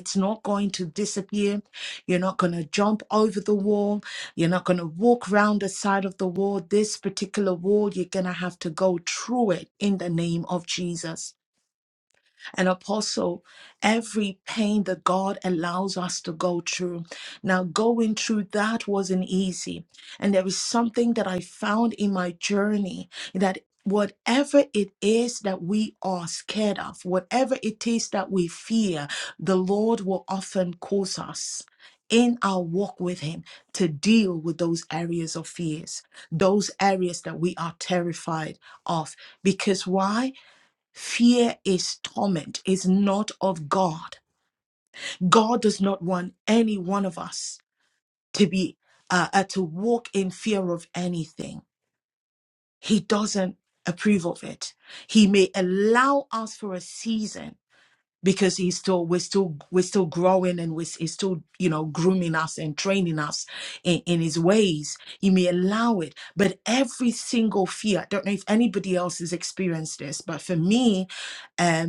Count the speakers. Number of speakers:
one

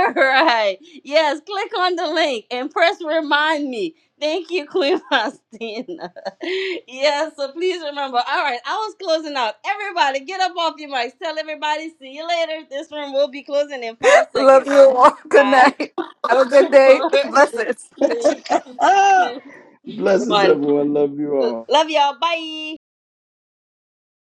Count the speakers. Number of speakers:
three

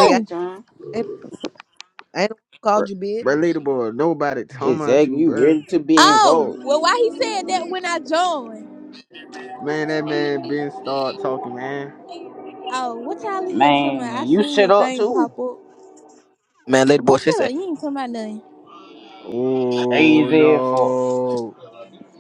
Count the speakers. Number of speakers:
four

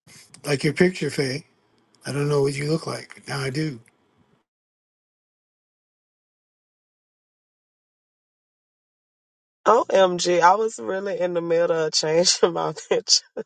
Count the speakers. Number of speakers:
two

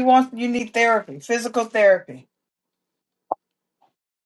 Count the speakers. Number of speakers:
one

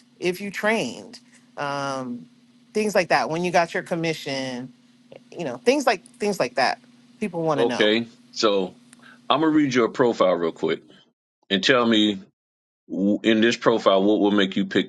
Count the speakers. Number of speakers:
two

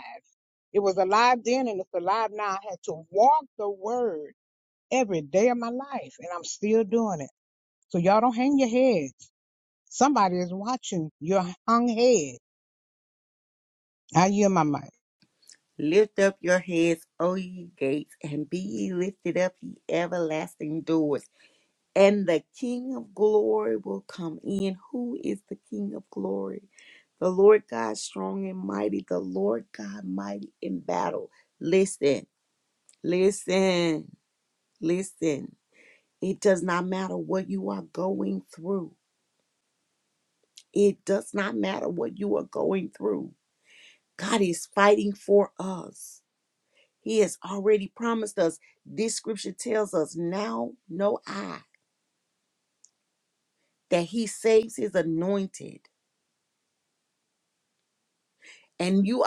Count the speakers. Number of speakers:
two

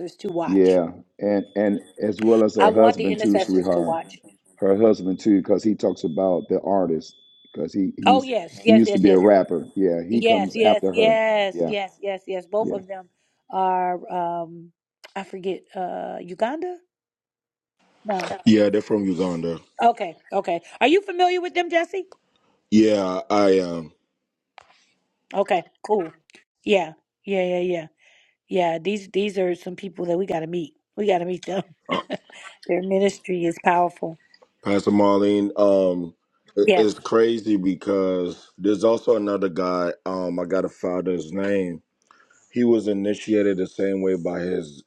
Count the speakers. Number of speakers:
three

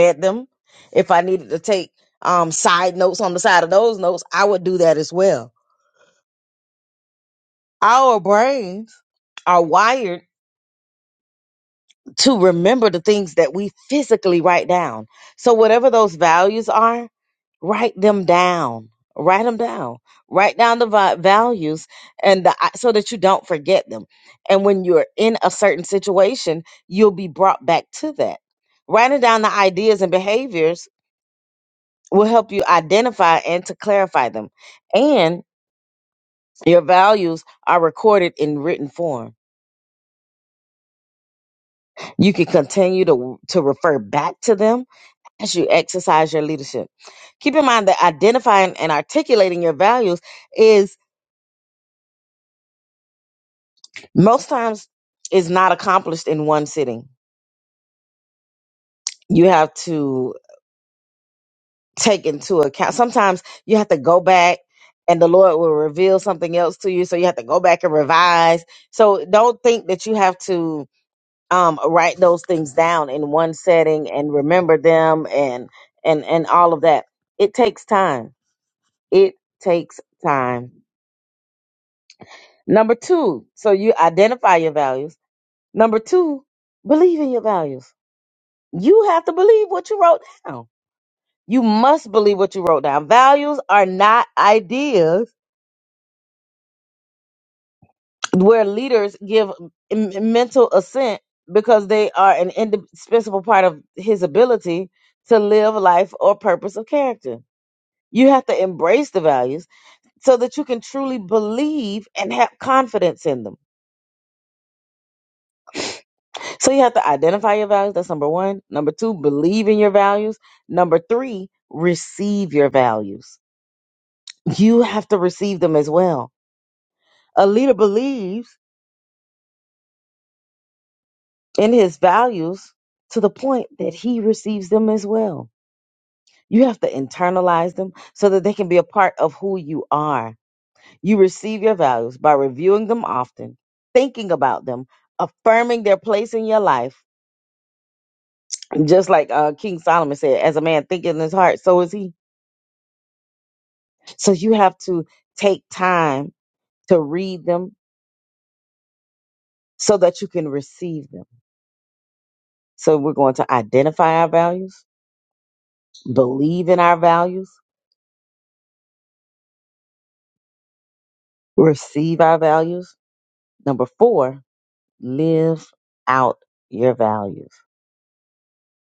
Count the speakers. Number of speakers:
one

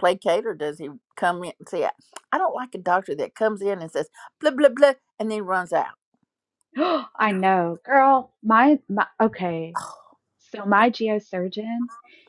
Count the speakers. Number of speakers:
two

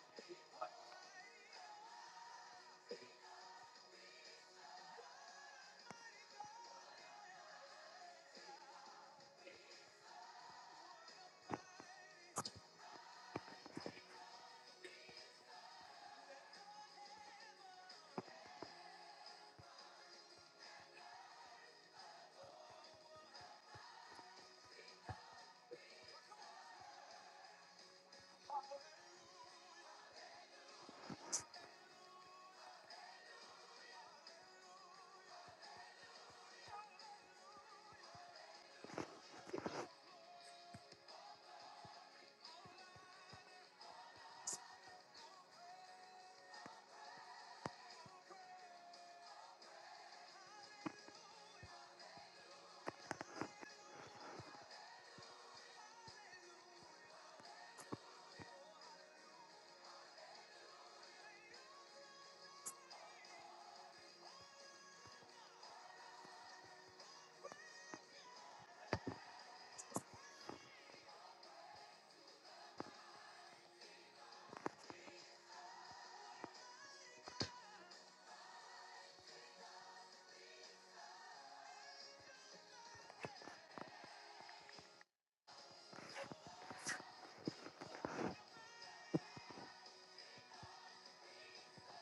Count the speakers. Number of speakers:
zero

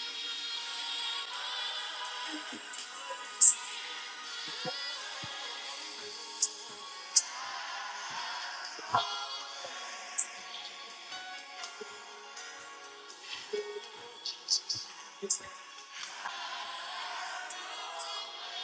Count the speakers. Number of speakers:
zero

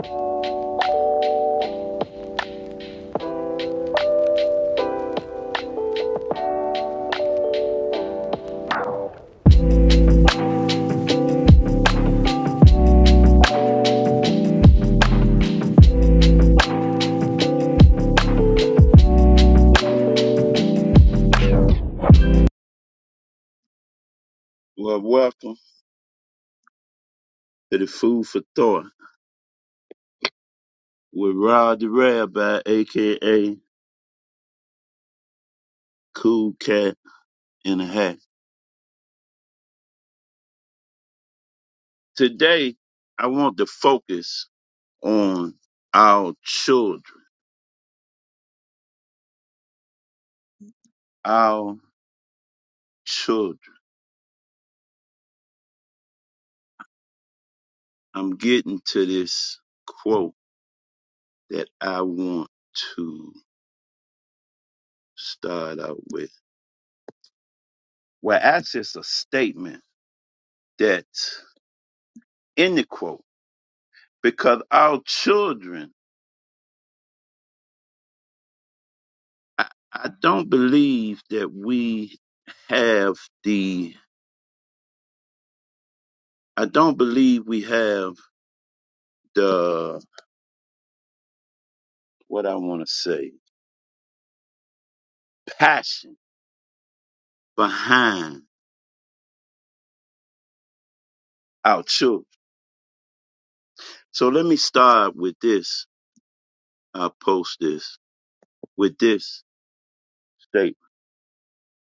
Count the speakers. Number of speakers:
one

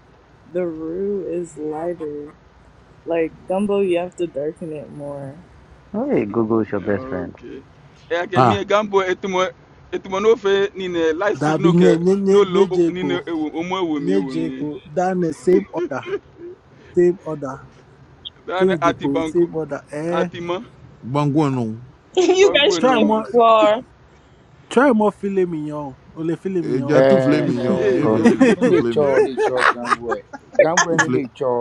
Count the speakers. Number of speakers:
seven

